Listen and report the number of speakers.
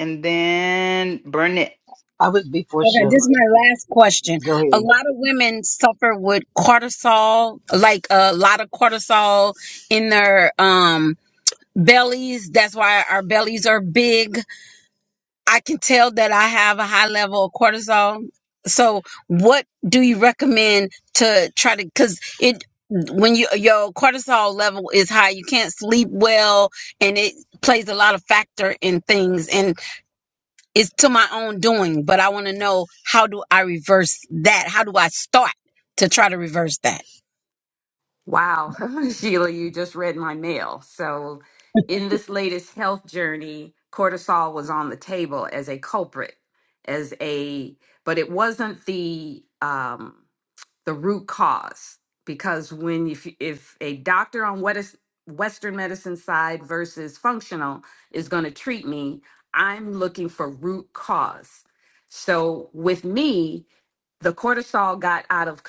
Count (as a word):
four